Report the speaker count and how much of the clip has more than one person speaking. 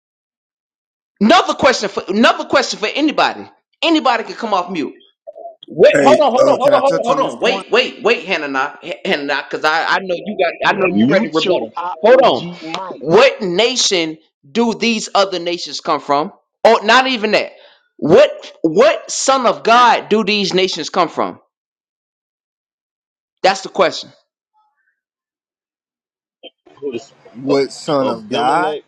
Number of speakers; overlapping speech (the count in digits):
3, about 16%